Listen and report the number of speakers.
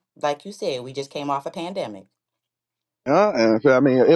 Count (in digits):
2